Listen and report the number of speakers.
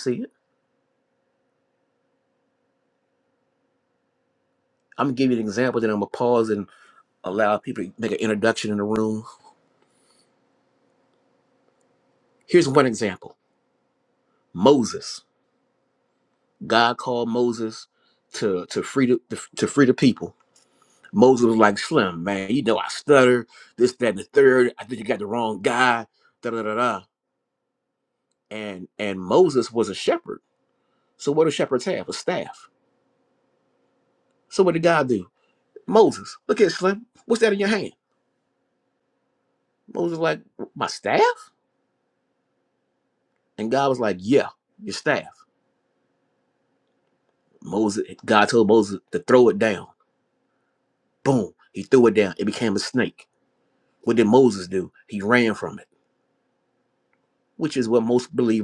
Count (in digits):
1